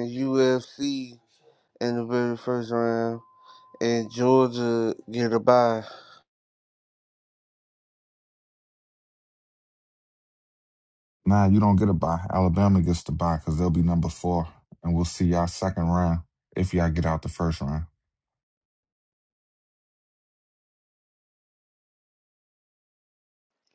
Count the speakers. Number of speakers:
2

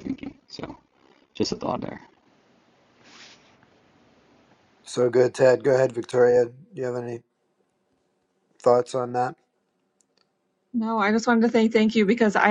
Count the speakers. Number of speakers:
3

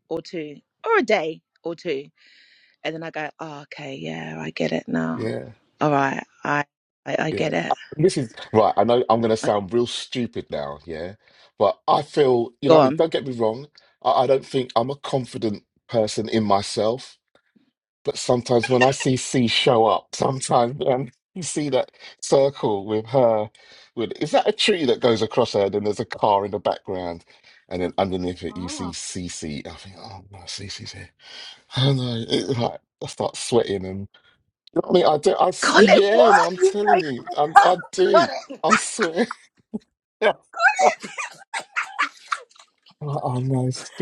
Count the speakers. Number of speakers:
3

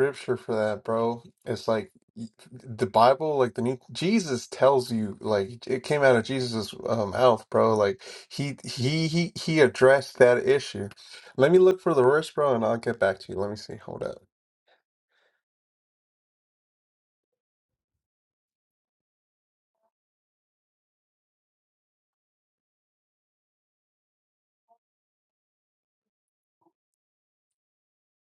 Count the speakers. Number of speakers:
1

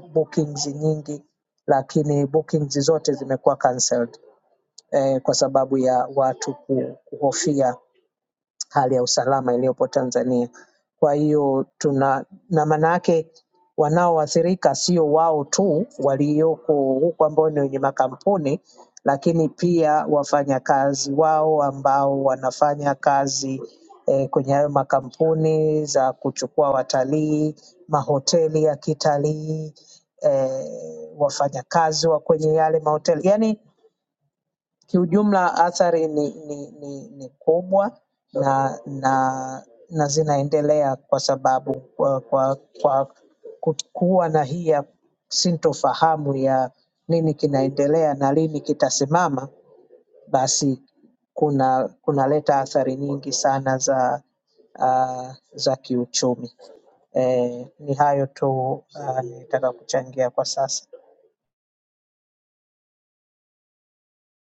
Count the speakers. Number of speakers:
1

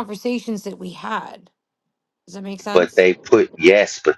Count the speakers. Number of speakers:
2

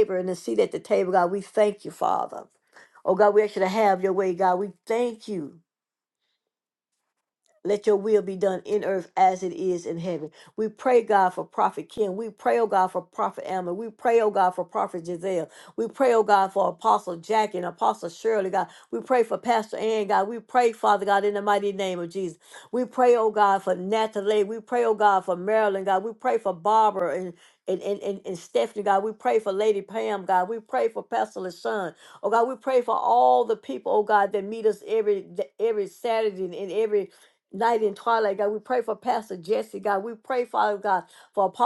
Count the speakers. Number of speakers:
1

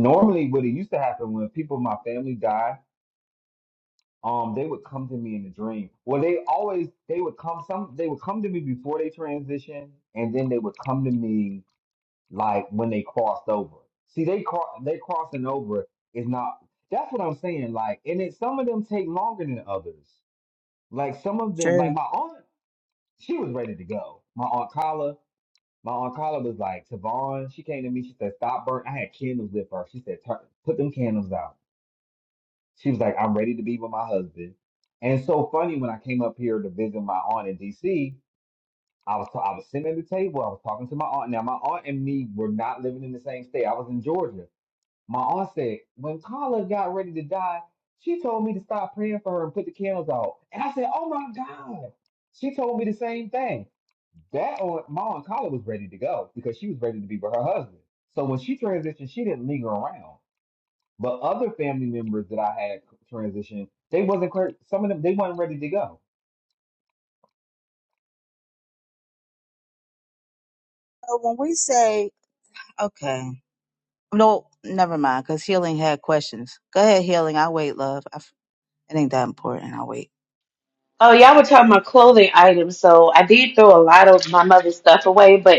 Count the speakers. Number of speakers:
3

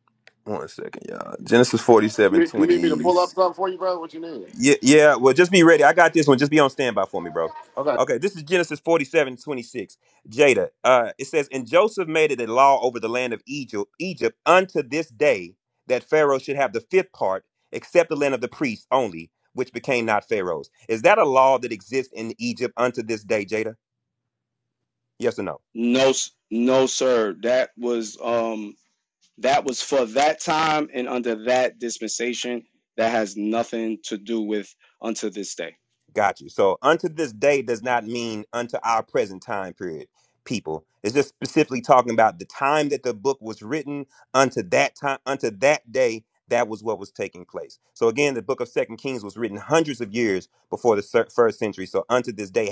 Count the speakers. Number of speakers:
3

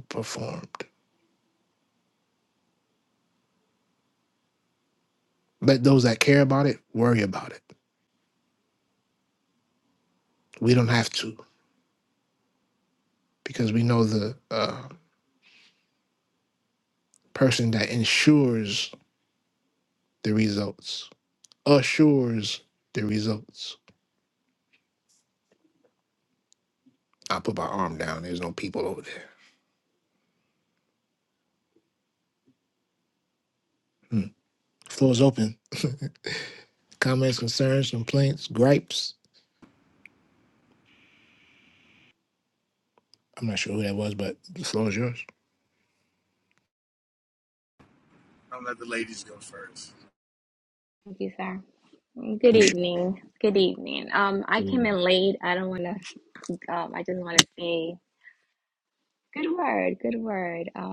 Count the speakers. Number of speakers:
3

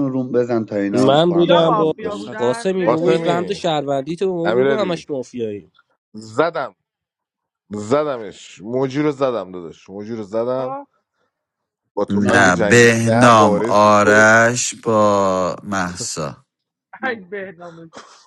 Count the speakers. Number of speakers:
5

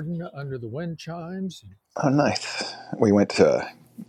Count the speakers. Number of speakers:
2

